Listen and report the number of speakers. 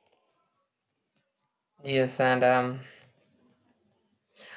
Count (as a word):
one